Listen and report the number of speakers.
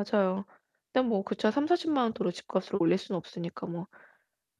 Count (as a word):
one